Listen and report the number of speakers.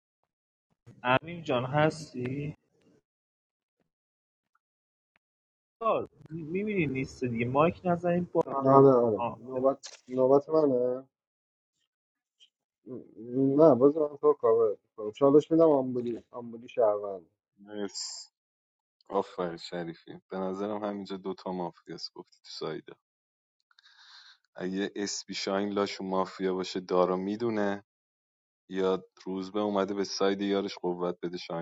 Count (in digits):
3